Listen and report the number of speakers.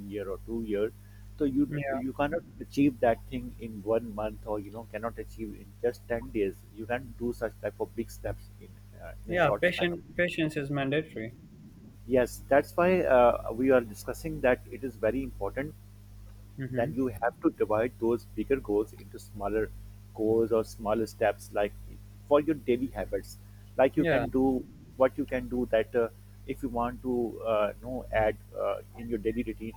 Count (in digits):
2